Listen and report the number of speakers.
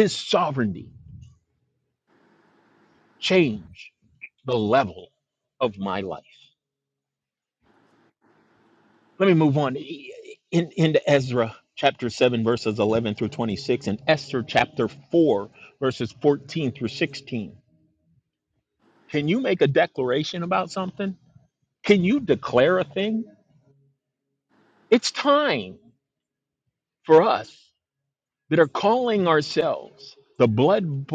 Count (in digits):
1